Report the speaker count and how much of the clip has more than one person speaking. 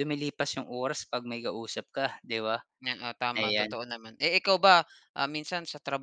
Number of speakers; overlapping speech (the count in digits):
2, about 7%